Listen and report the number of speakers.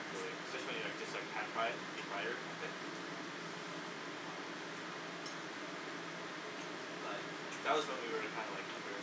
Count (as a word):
one